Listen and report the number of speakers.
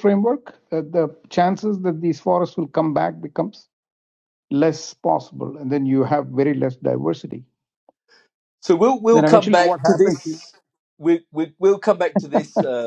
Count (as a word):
two